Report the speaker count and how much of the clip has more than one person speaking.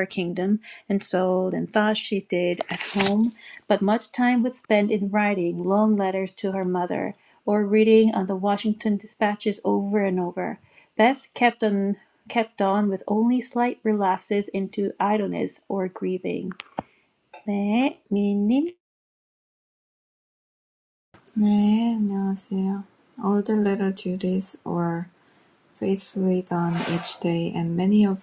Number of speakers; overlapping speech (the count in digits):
2, no overlap